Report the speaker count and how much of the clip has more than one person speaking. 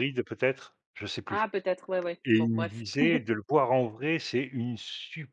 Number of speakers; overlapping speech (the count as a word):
two, about 14%